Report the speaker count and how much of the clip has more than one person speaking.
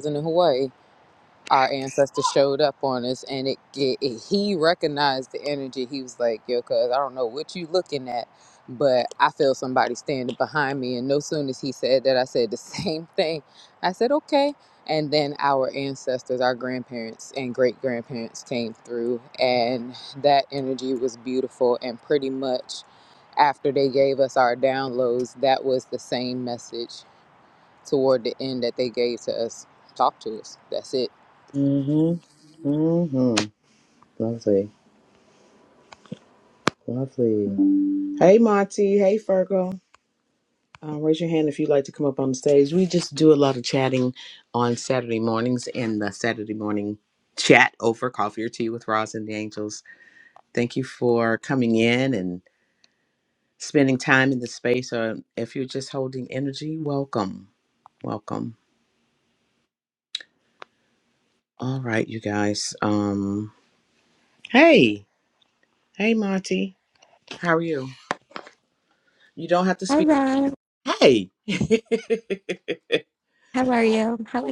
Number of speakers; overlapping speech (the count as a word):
three, under 1%